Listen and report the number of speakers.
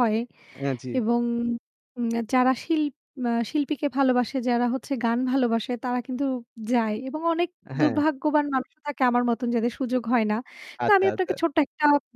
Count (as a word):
two